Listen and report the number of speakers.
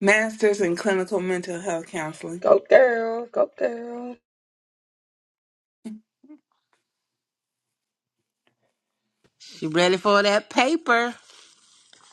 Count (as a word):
three